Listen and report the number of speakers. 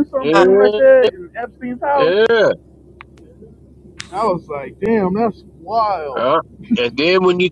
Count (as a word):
two